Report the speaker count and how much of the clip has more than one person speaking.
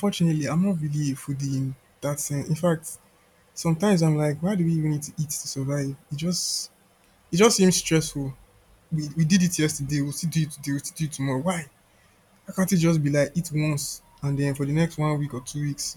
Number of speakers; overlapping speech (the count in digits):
1, no overlap